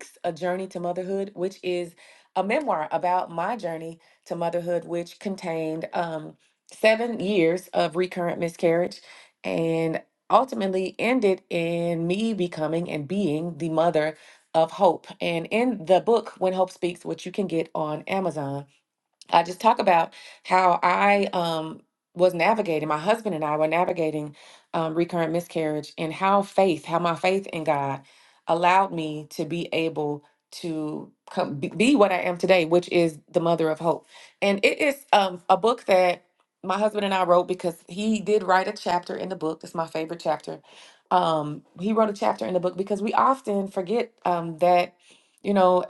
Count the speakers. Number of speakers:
1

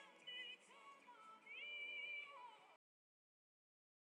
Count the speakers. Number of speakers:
0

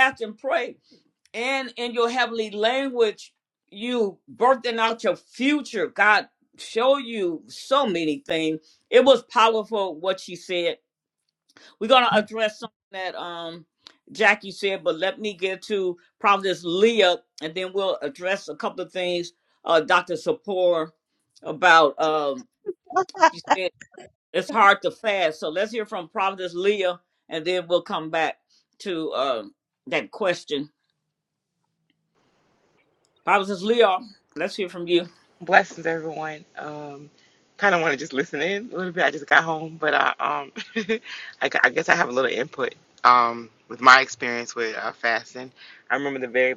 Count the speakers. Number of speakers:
2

